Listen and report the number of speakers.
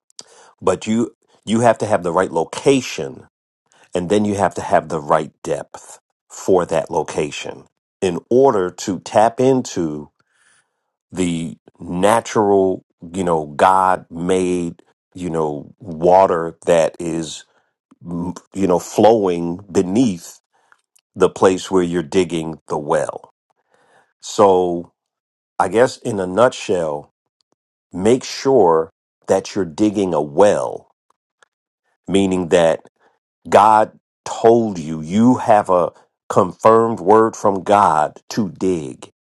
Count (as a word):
one